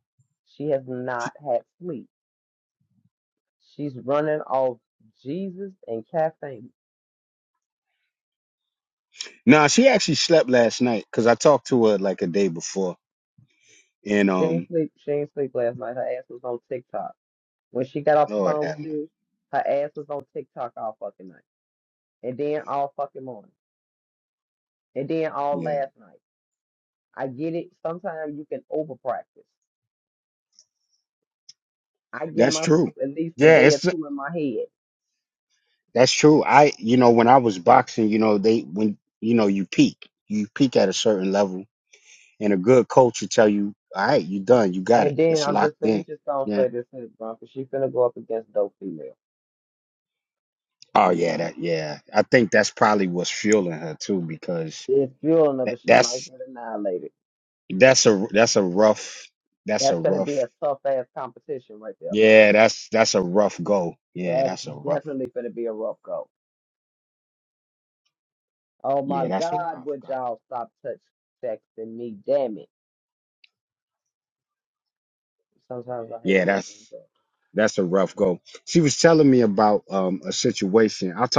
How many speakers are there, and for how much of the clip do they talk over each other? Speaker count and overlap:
two, about 7%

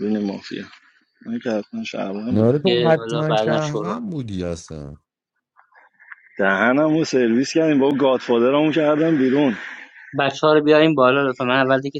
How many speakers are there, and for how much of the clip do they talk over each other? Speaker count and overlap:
three, about 13%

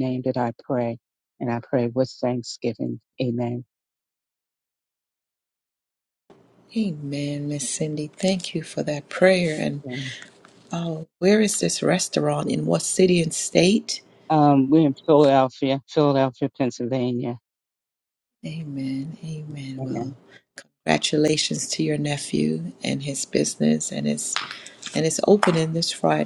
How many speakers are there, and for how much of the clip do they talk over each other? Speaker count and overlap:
two, about 1%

